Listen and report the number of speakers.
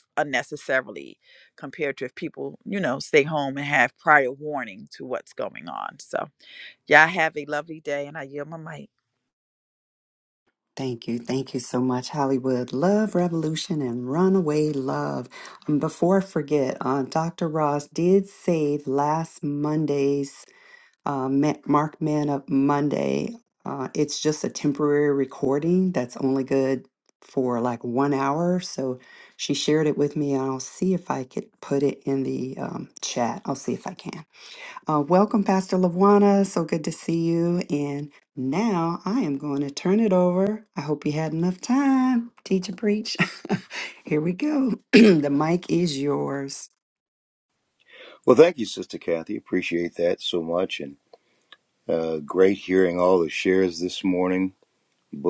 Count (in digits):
3